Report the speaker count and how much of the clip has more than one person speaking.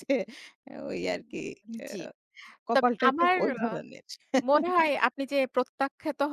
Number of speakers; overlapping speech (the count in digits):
2, about 16%